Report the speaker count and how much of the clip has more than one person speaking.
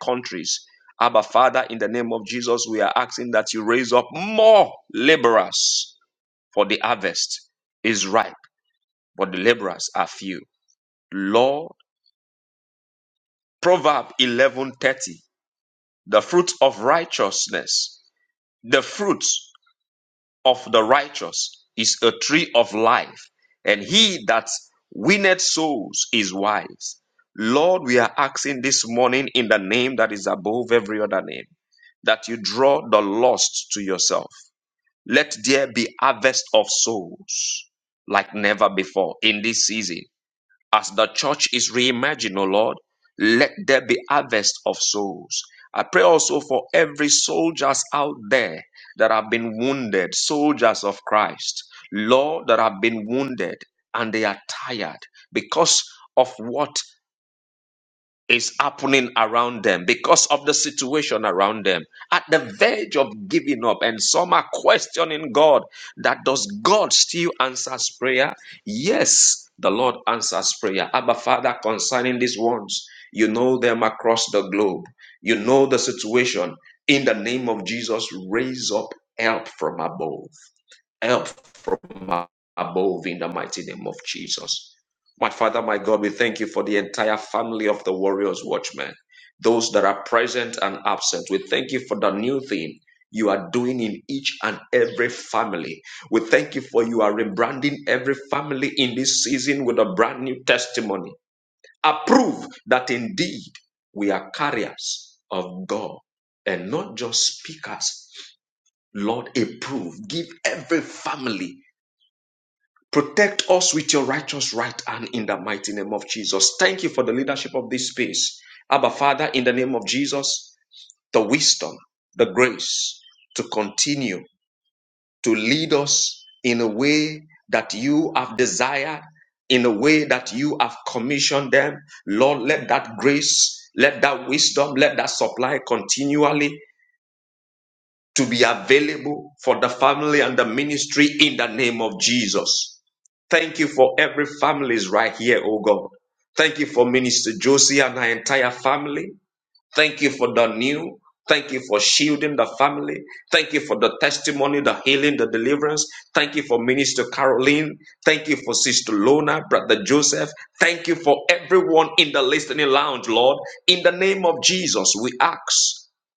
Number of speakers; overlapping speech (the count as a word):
one, no overlap